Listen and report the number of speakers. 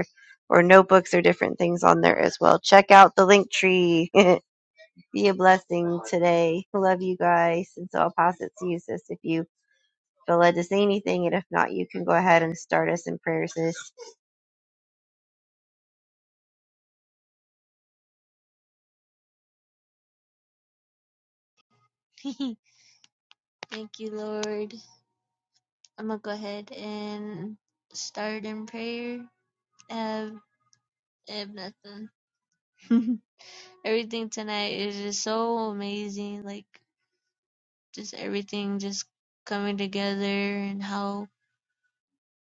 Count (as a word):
two